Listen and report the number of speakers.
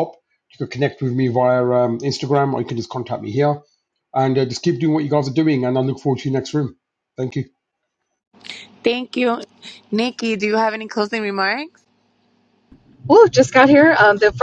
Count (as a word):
three